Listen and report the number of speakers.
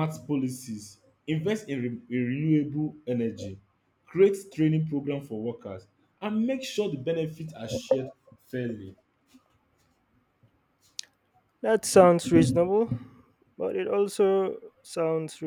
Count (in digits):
2